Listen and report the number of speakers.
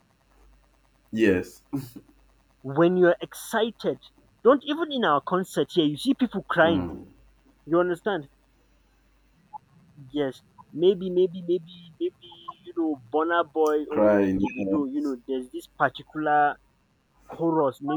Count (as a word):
two